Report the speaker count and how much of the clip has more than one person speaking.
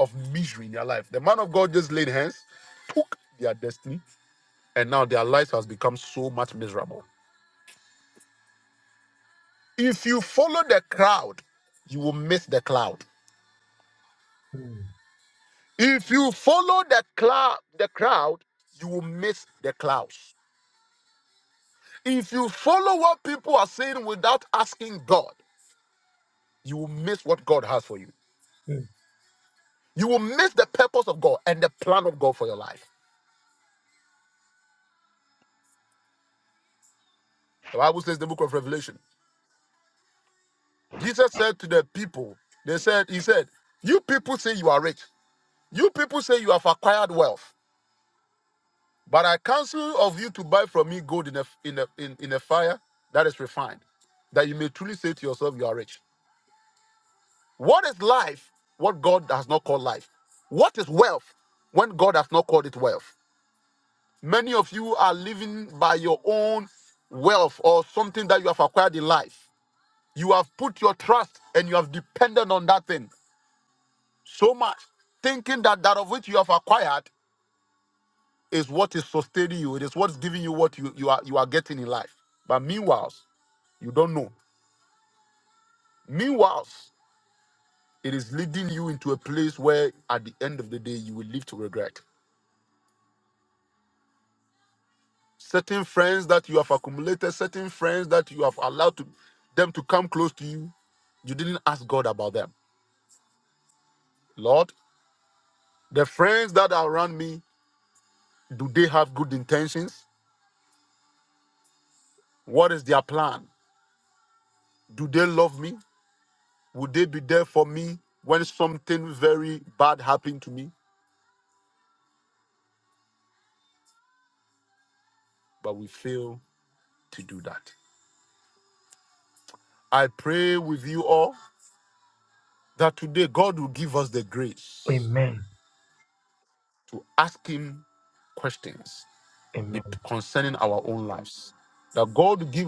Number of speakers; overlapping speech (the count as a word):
two, under 1%